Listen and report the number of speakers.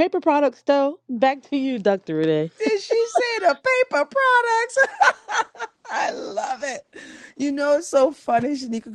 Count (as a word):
two